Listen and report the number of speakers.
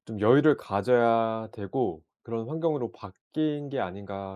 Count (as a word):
one